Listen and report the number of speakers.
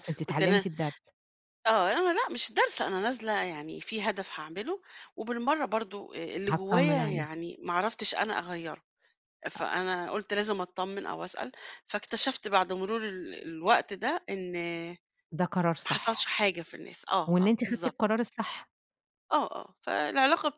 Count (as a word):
two